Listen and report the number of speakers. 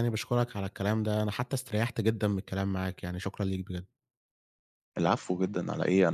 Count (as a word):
two